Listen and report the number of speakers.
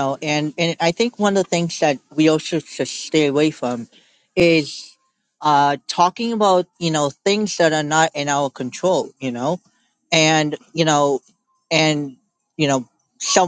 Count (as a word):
one